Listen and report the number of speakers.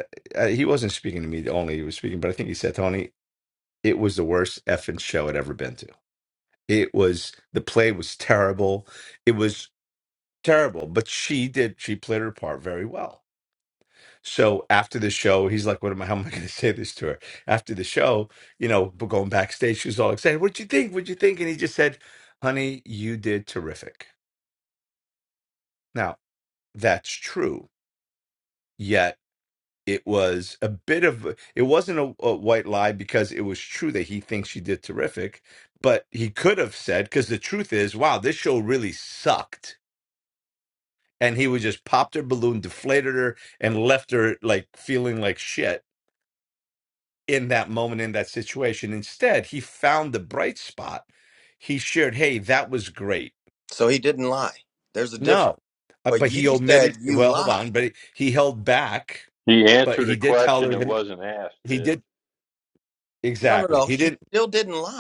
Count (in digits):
3